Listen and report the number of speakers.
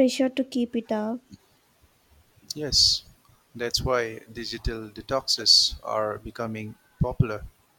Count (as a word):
two